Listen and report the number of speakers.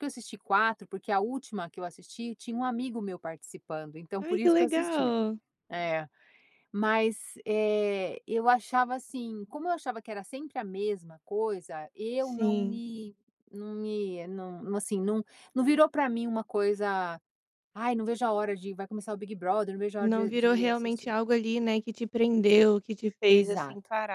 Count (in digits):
2